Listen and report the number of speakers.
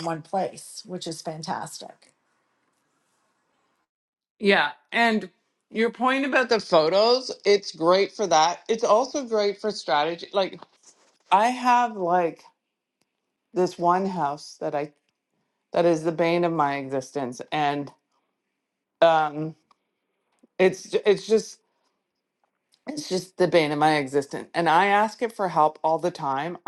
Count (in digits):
2